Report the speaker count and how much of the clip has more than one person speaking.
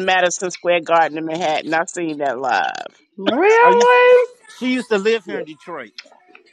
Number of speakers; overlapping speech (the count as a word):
three, about 4%